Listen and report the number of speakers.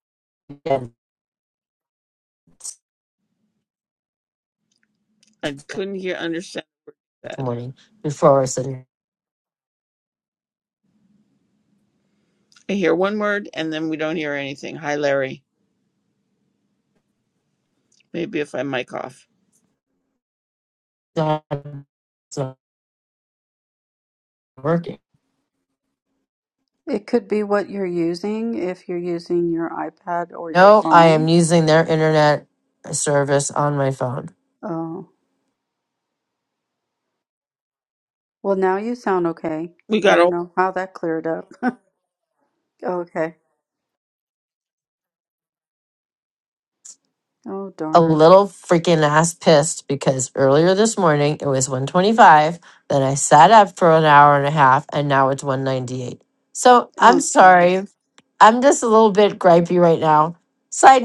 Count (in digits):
3